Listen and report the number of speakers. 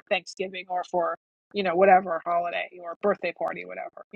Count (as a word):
one